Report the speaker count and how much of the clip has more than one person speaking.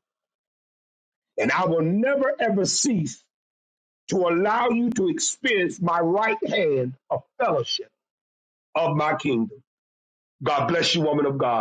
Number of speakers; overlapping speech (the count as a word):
one, no overlap